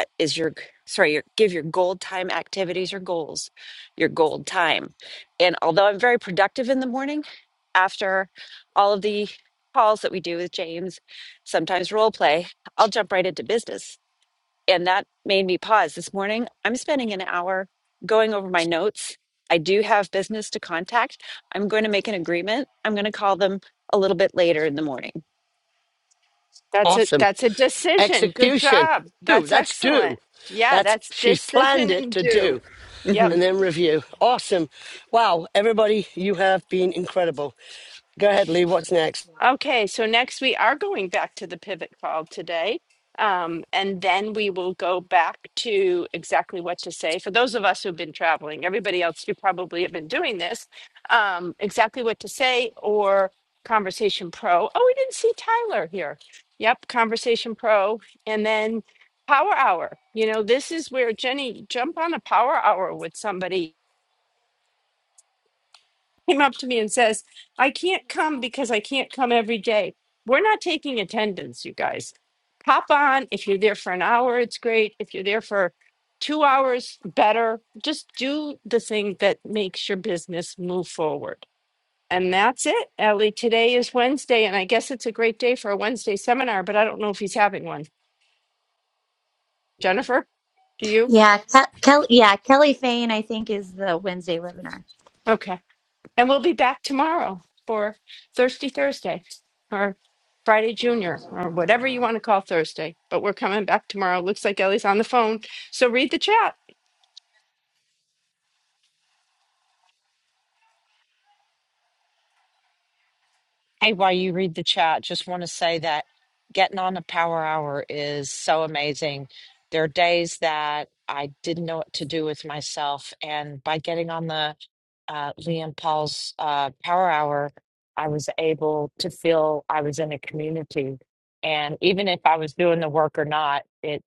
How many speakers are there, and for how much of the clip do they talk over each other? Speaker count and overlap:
5, about 3%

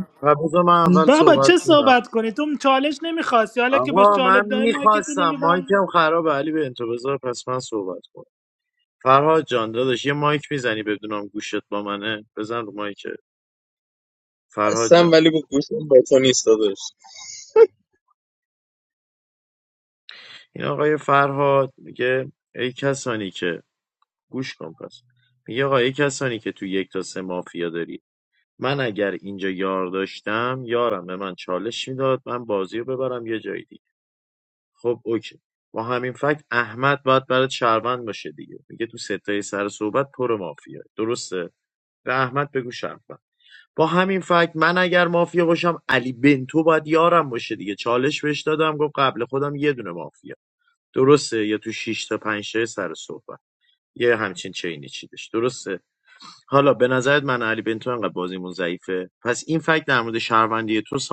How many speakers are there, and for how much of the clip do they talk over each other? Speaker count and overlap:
3, about 6%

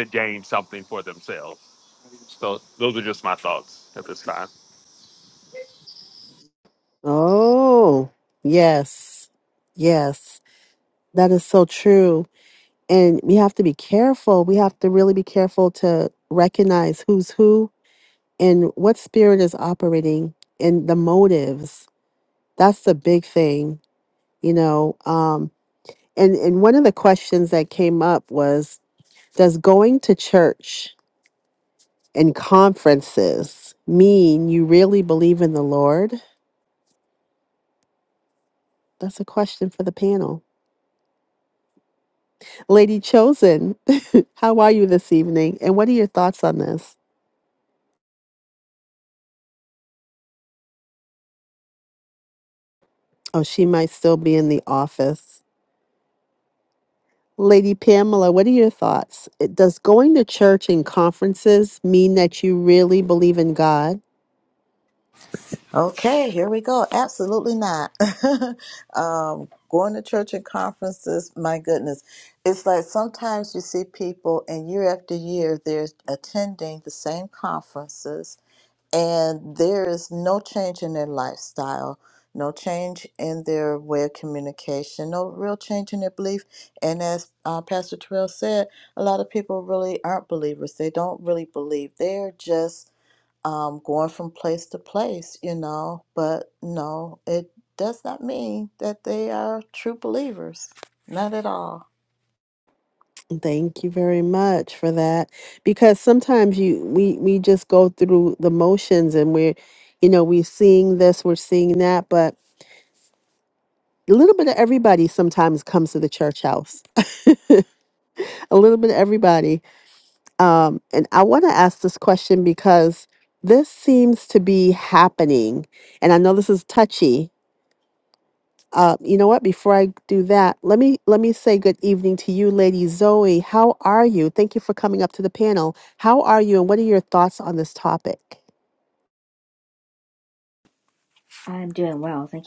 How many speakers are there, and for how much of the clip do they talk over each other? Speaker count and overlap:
4, no overlap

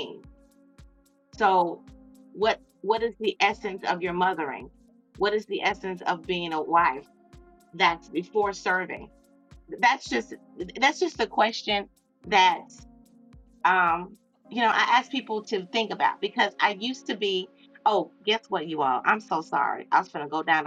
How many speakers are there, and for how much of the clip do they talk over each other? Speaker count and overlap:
1, no overlap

